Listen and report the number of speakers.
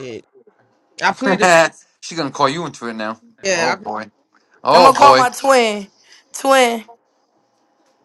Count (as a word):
three